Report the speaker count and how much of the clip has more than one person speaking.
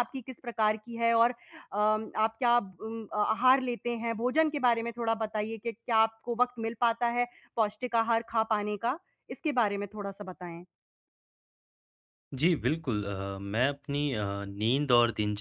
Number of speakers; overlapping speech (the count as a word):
two, no overlap